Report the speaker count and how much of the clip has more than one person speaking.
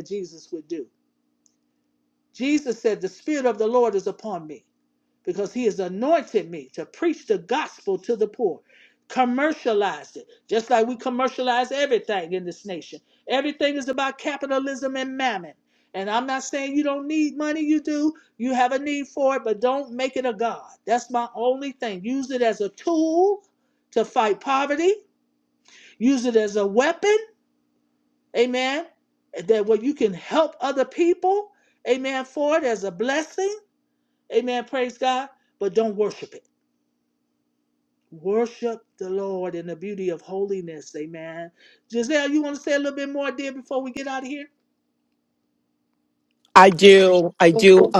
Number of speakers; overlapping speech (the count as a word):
two, no overlap